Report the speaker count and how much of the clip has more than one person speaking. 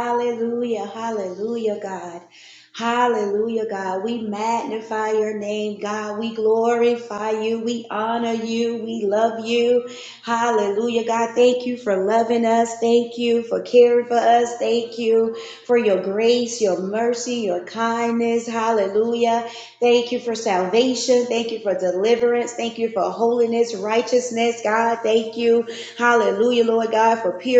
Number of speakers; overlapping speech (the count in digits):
1, no overlap